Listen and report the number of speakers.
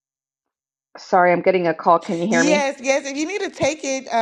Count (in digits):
2